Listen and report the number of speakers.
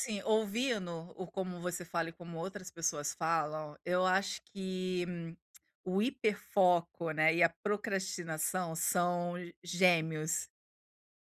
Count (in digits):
1